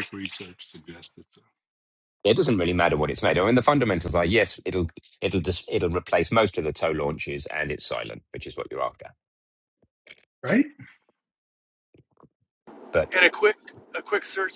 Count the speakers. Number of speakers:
three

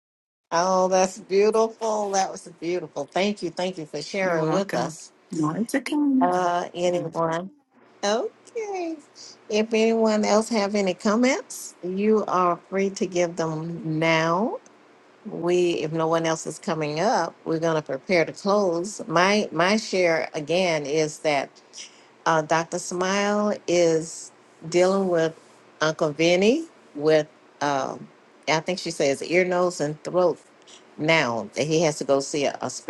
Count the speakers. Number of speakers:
two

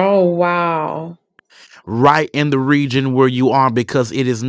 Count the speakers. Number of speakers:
two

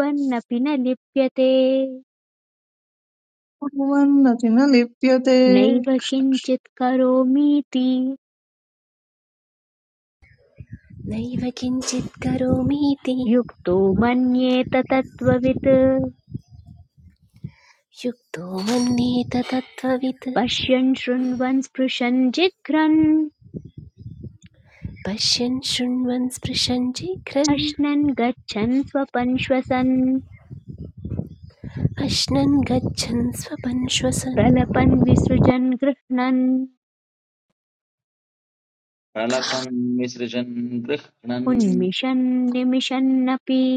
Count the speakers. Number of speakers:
four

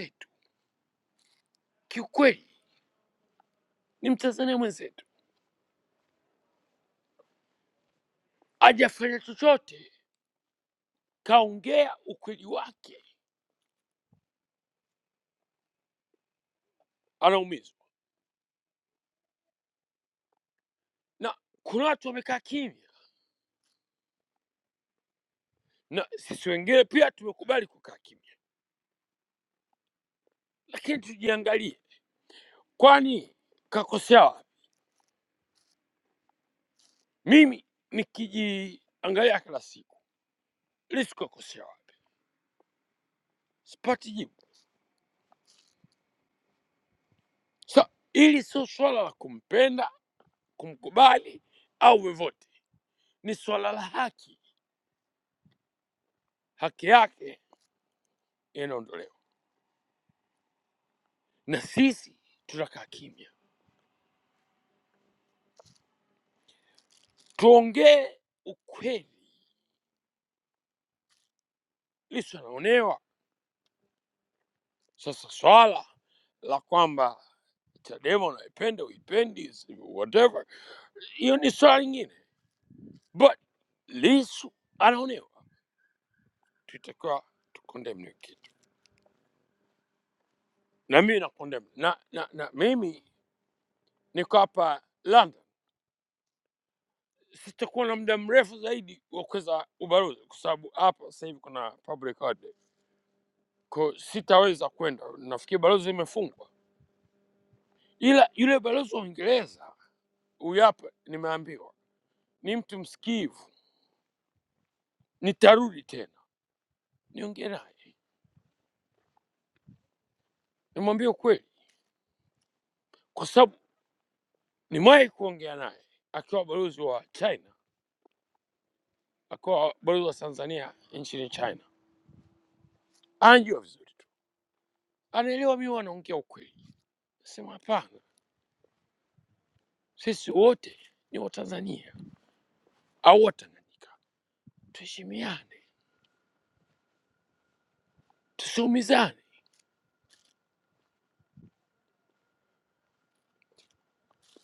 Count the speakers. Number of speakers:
one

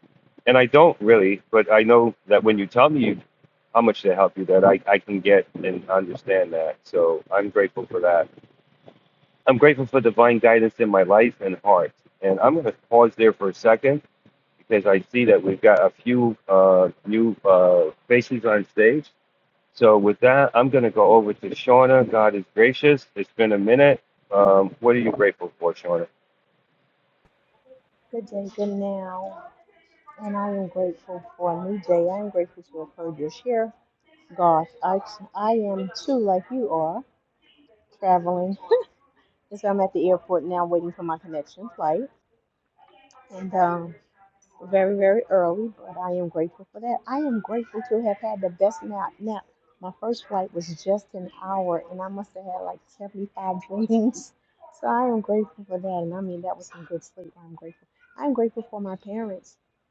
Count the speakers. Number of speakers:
two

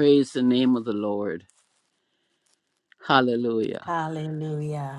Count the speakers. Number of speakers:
two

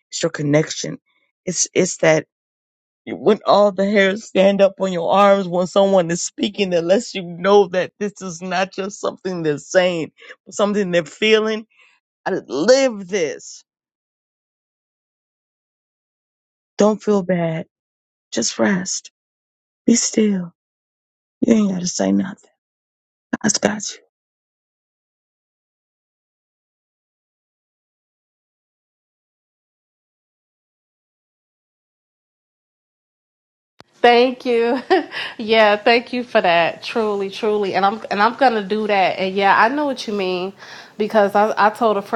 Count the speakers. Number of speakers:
two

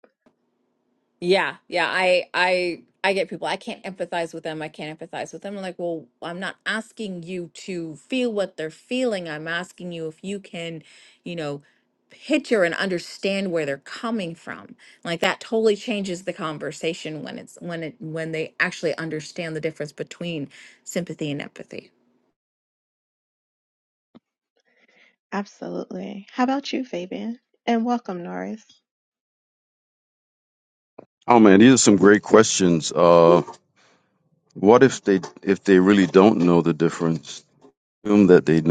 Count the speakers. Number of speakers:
three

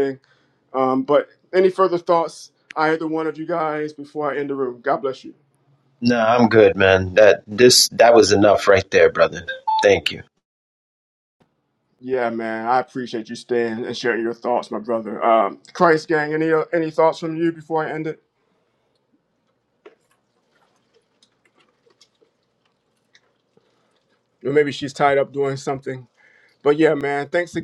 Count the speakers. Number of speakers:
two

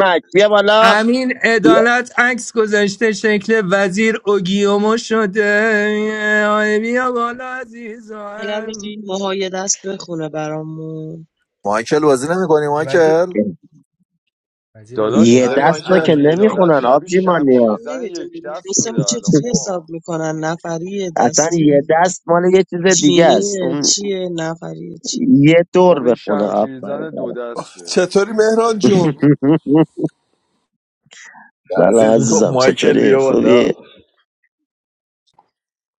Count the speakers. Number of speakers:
six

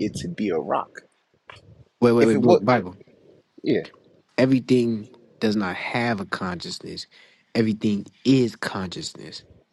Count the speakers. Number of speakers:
two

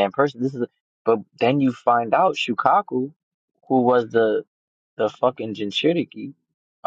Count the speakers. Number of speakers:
one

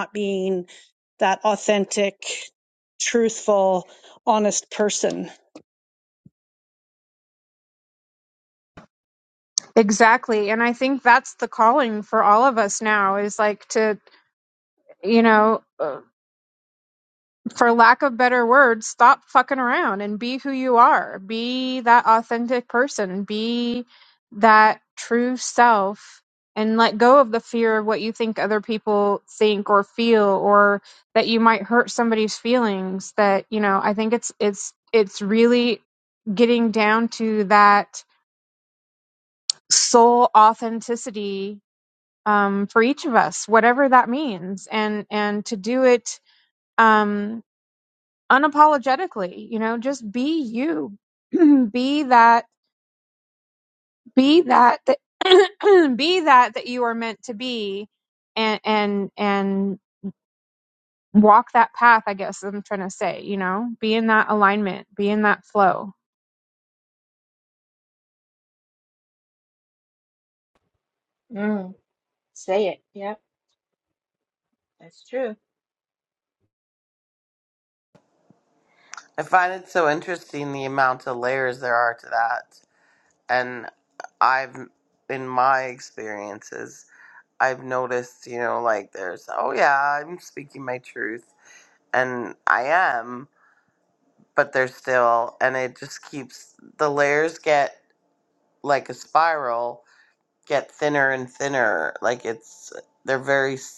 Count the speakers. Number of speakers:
four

